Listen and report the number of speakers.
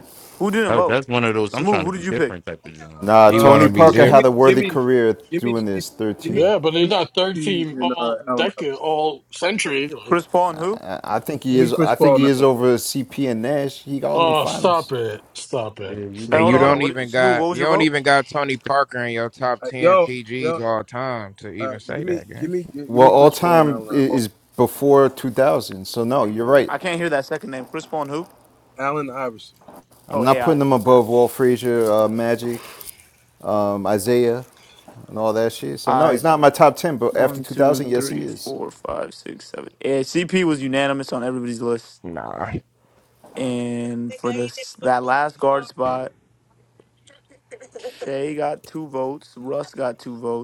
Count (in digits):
6